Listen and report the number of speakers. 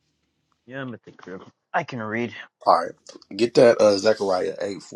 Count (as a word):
two